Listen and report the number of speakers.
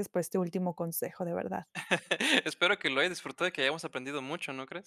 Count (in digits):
2